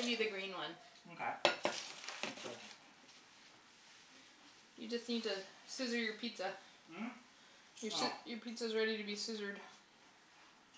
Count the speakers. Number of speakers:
2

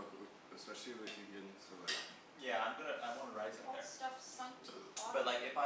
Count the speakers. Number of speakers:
3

